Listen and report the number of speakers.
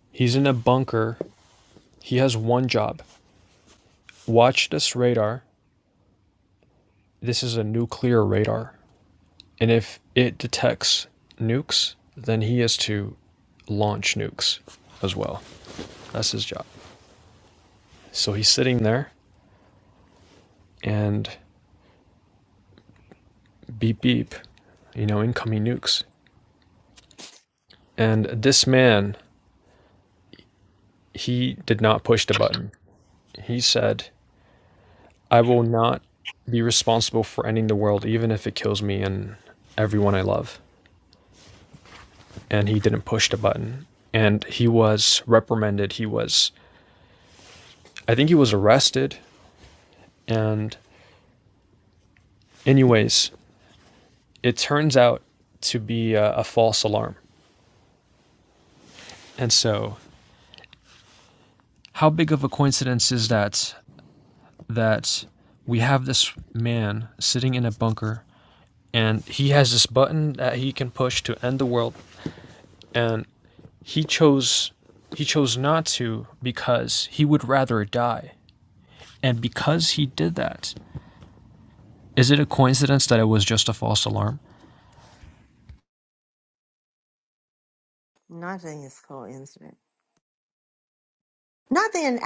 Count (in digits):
2